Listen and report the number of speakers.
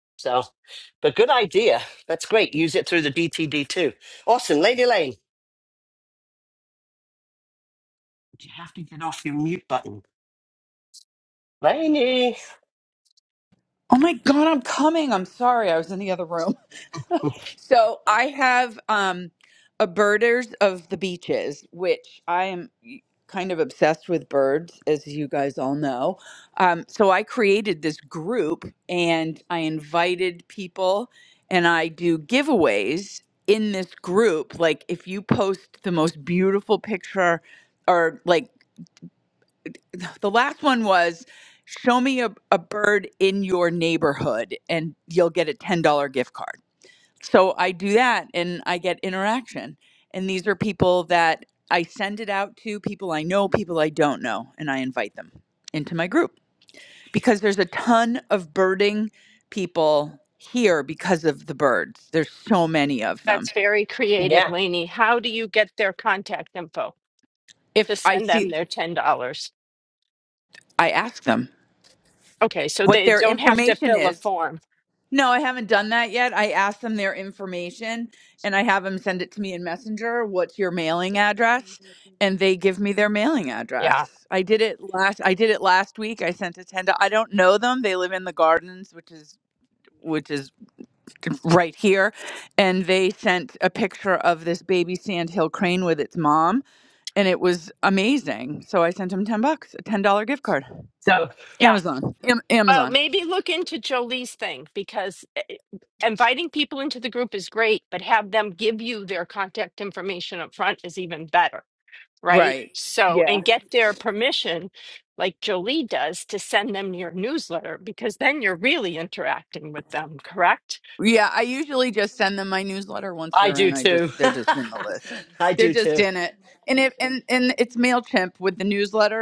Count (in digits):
3